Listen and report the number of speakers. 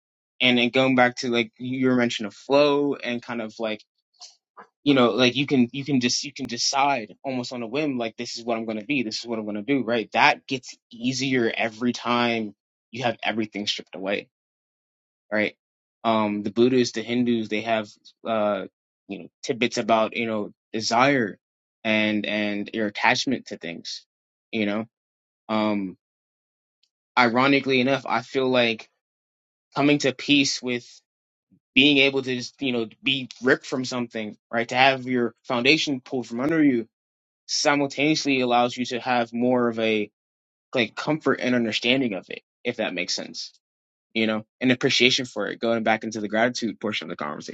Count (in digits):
1